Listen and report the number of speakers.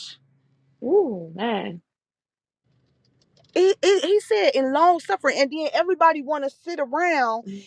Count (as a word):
two